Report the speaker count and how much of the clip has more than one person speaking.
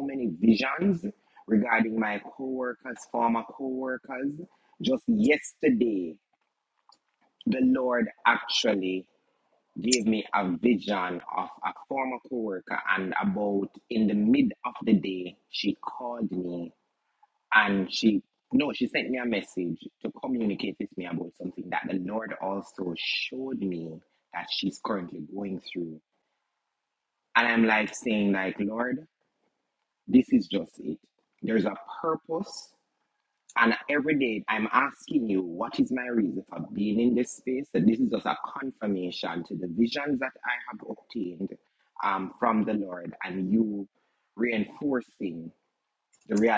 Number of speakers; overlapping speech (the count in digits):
1, no overlap